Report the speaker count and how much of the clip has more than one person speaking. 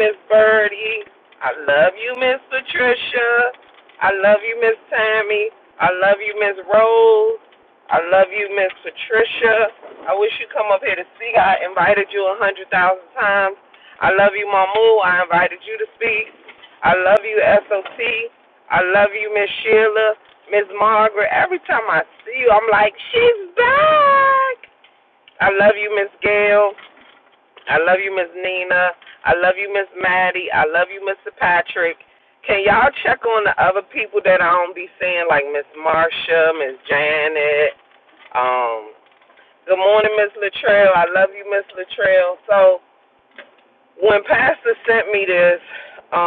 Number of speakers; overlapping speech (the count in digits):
1, no overlap